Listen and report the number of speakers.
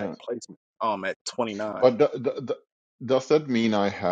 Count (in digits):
2